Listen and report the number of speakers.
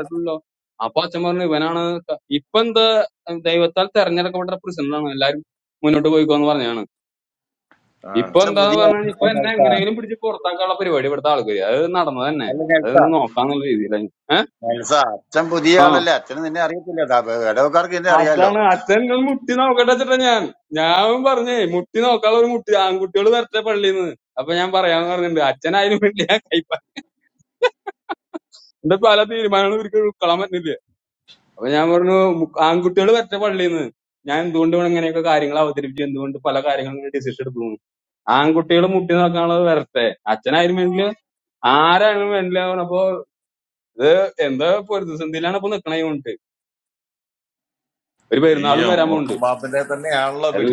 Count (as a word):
three